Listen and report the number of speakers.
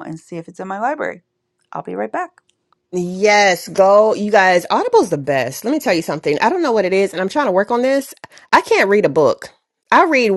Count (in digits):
2